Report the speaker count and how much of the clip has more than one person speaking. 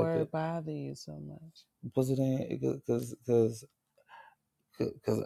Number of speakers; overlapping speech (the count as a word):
two, about 5%